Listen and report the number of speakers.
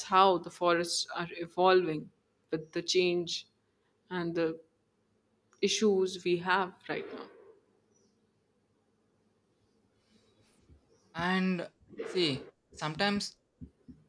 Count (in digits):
2